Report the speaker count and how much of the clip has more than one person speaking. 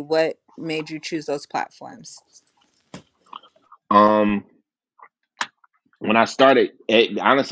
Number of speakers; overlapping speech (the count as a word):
two, no overlap